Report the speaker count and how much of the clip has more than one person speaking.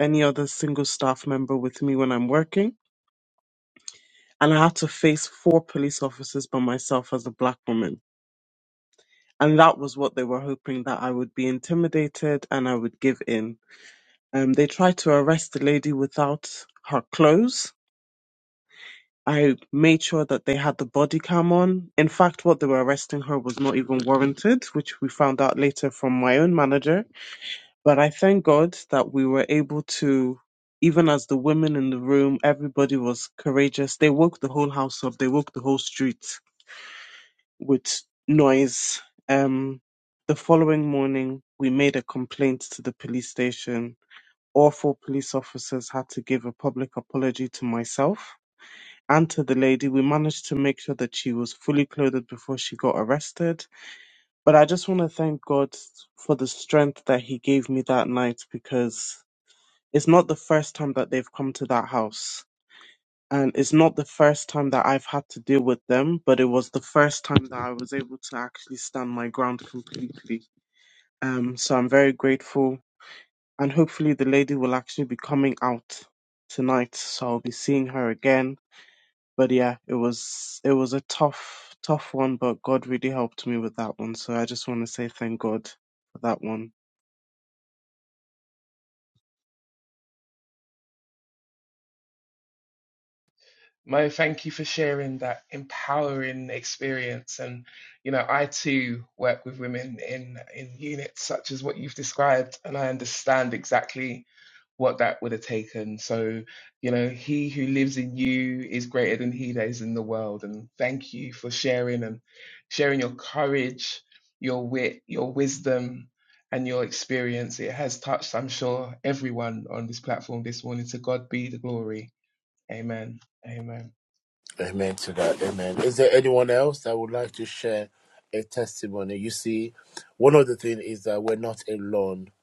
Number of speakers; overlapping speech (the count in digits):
3, no overlap